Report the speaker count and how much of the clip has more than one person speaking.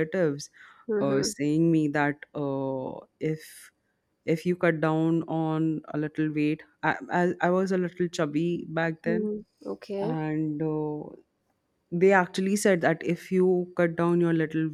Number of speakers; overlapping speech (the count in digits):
2, about 5%